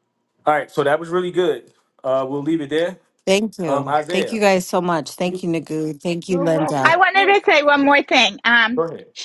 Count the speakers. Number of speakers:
3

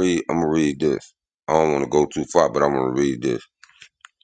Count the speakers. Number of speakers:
1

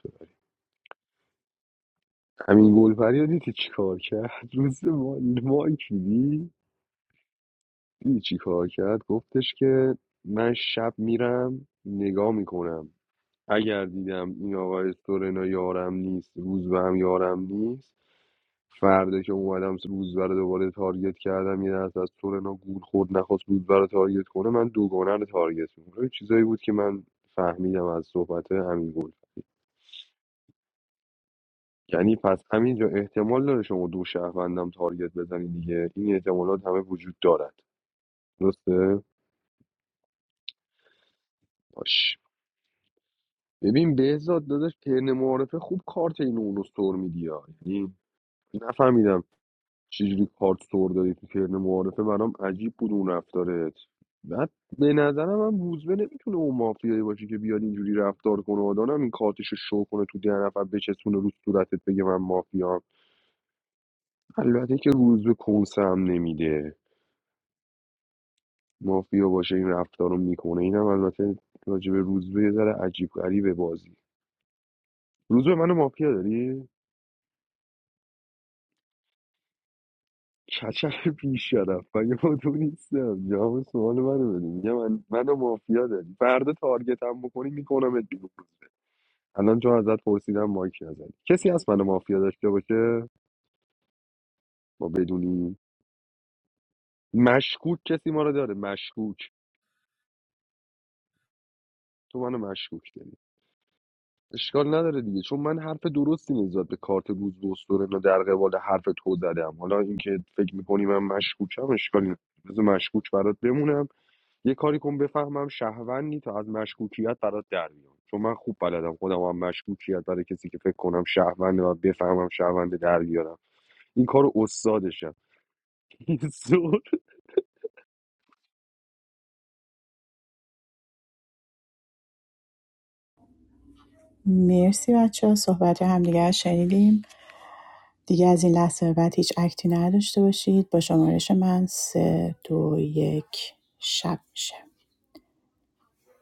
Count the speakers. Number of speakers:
2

